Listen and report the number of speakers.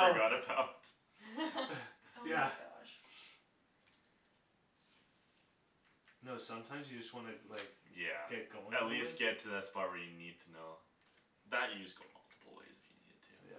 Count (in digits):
3